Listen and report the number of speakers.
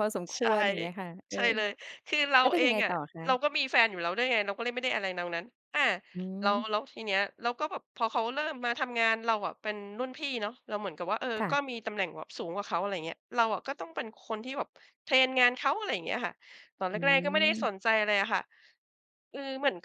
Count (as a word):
two